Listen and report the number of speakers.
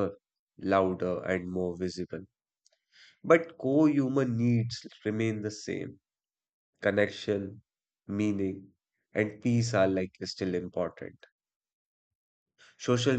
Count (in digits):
1